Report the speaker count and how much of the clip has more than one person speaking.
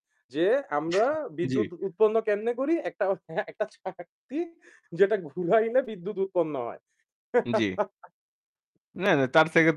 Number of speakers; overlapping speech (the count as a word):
two, about 2%